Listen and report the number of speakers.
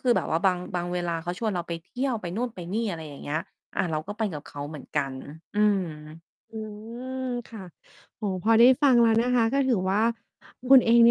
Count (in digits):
2